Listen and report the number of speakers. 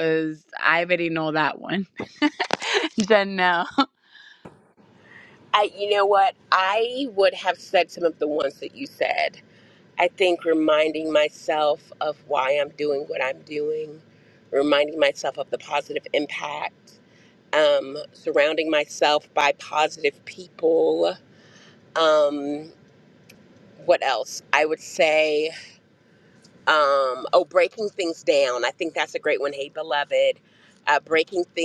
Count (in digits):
2